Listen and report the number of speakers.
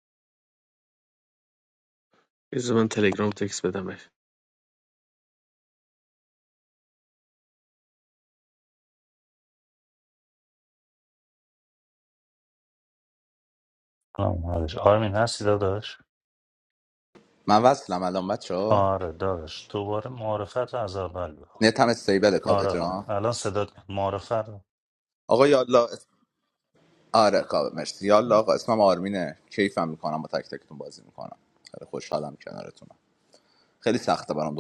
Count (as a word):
three